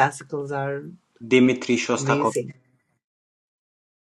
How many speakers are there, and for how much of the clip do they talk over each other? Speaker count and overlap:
2, about 11%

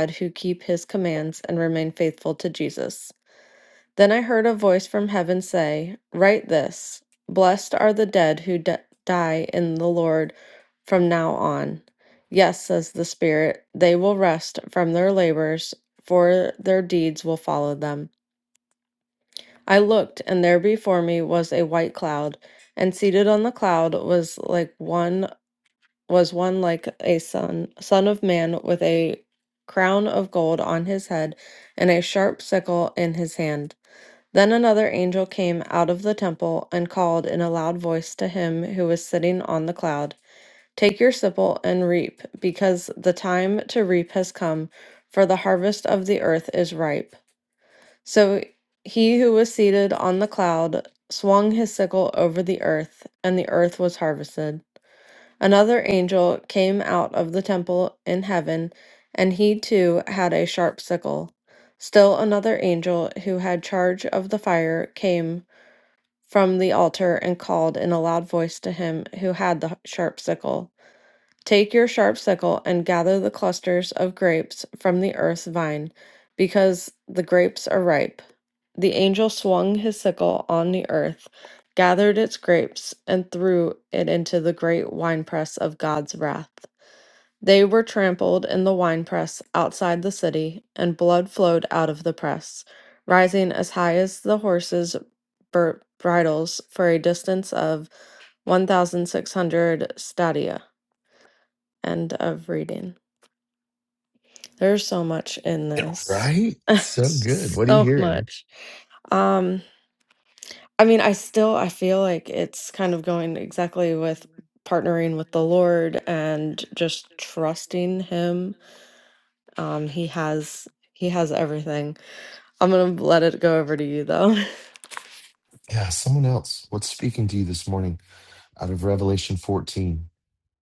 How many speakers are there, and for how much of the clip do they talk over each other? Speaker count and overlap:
2, about 1%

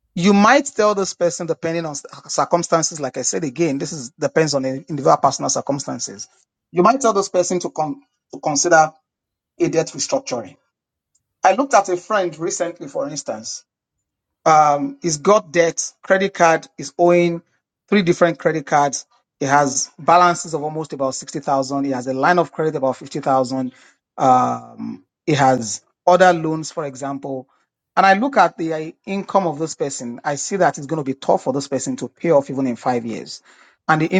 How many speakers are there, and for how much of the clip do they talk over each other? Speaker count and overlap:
1, no overlap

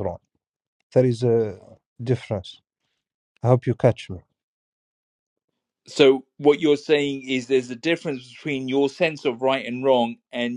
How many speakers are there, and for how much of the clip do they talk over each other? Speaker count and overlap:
2, no overlap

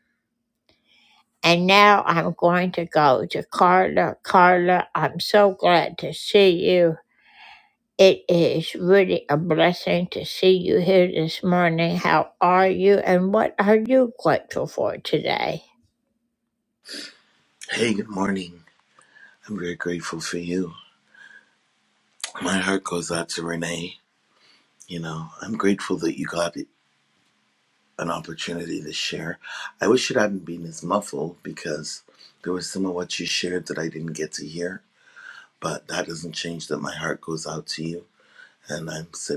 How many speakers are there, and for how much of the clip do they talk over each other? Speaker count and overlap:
2, no overlap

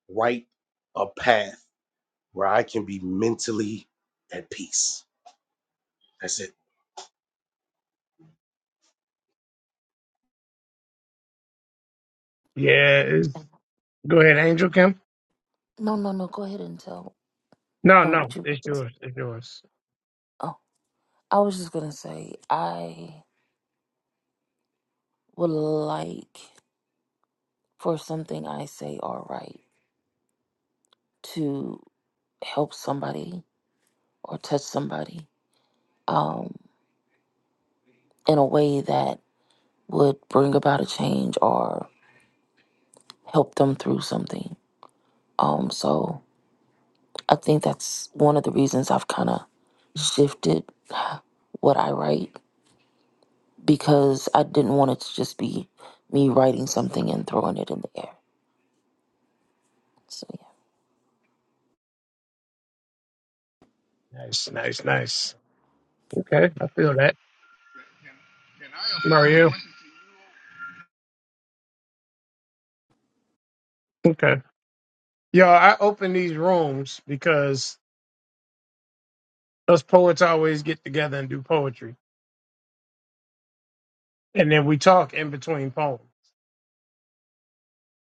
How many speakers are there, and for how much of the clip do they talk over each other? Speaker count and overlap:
4, about 1%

